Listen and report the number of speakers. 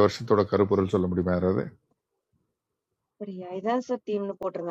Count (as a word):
two